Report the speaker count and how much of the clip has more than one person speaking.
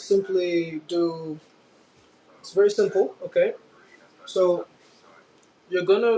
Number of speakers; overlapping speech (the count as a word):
one, no overlap